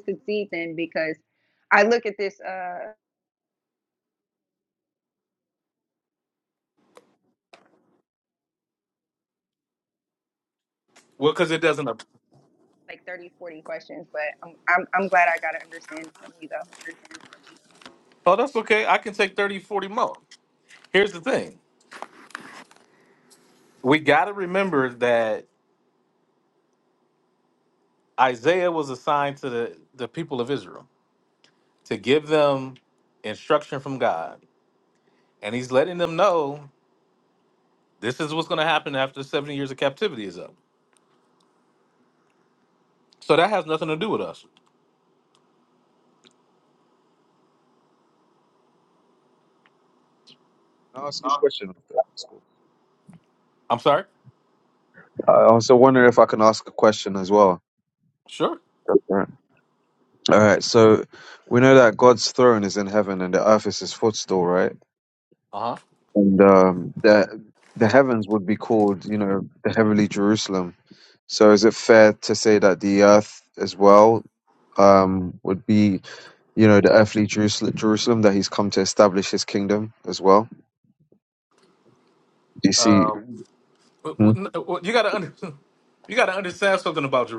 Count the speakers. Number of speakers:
three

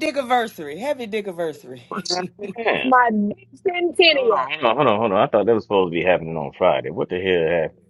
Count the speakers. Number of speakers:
three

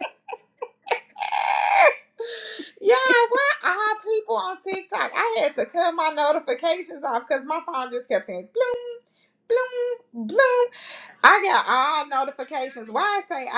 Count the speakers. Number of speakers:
one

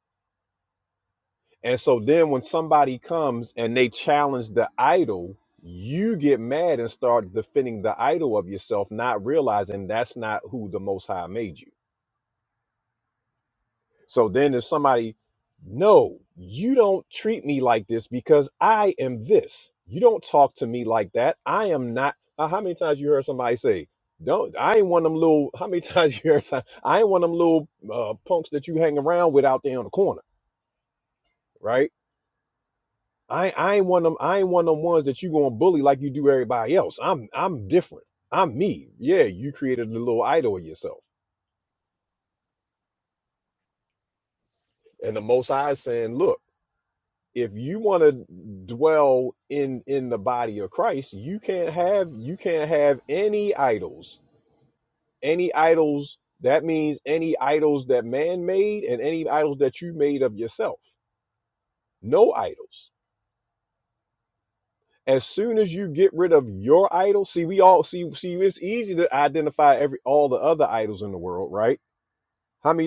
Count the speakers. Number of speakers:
one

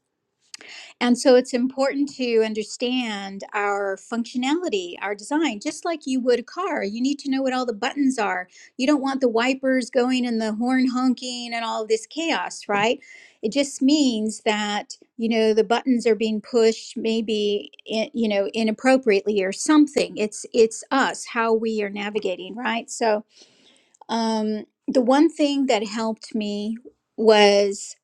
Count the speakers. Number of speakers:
one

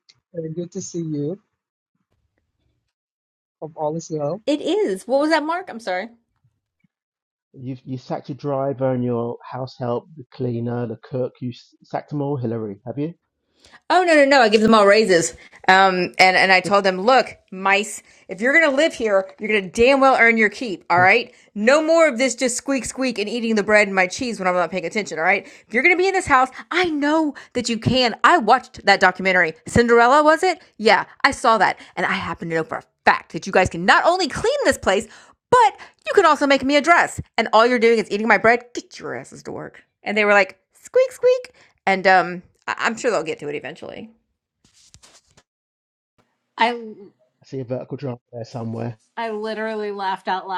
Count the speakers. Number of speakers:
four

